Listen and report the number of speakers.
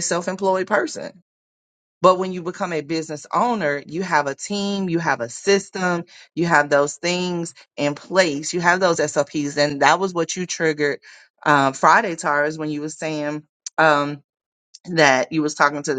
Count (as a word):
one